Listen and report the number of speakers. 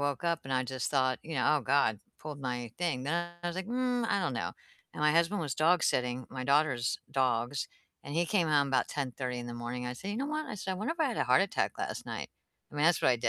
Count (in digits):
1